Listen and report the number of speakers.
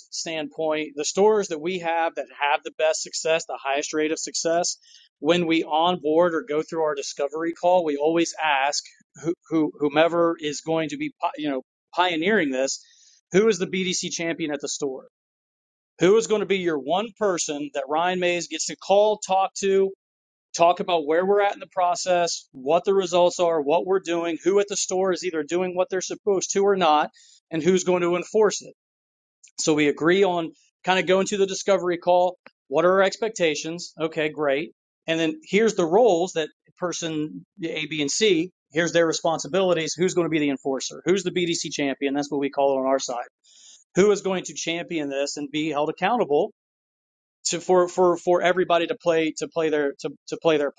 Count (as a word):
one